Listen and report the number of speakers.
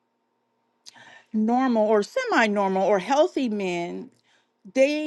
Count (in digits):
1